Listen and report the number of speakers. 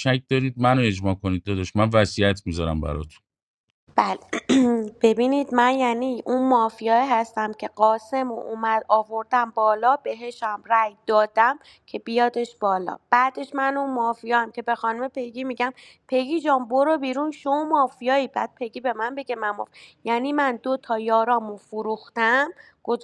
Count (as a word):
two